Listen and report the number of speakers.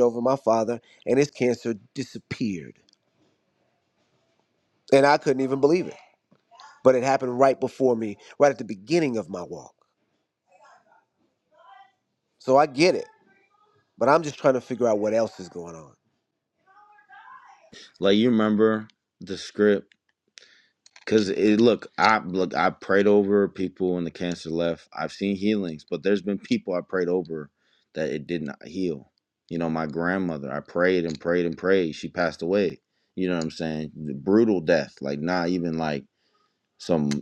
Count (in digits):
2